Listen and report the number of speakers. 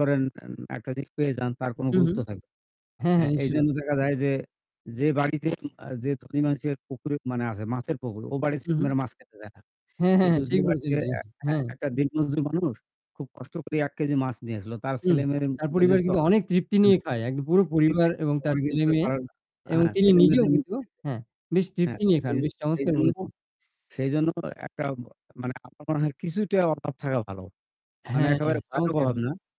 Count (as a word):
two